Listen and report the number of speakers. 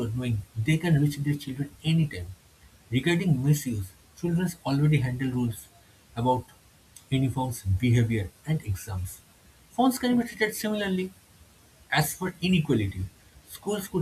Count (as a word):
one